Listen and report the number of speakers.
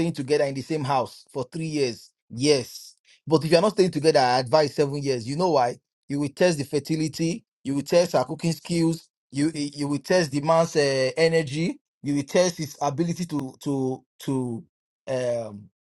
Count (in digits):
1